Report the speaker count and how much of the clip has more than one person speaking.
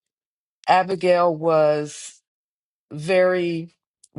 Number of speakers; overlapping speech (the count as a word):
one, no overlap